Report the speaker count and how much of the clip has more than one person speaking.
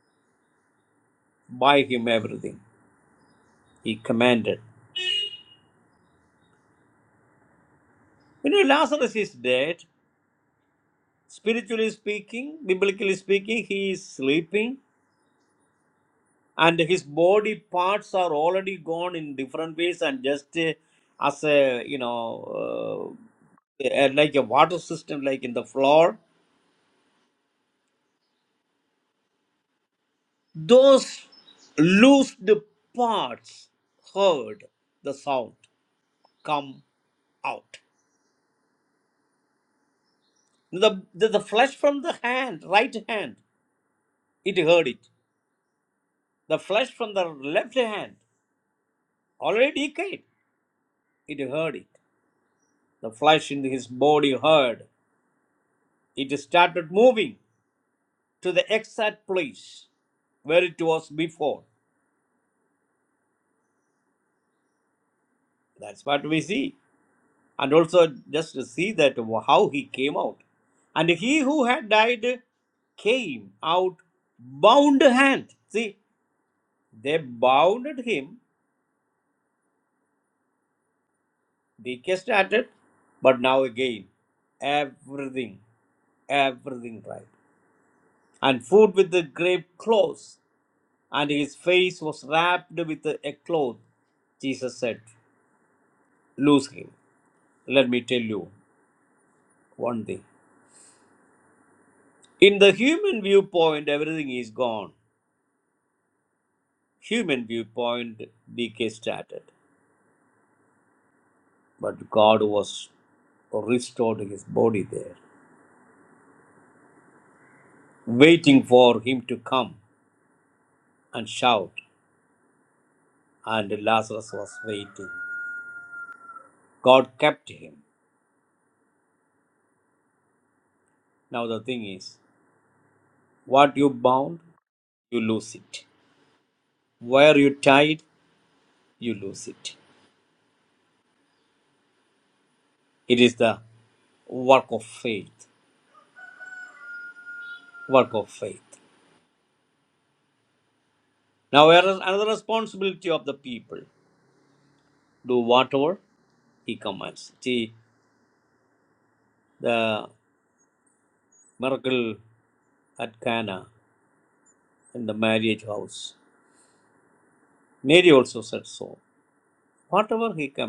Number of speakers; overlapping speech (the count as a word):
one, no overlap